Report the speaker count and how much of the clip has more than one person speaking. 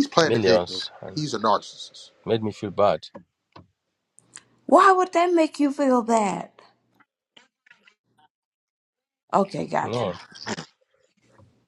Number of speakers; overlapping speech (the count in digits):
3, about 8%